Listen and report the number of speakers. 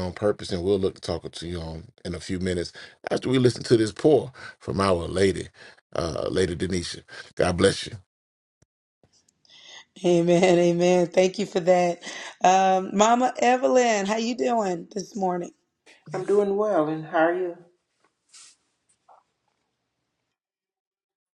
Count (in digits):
3